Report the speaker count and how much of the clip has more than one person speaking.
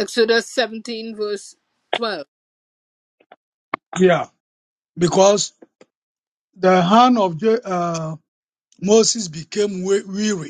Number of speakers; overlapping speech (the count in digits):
2, no overlap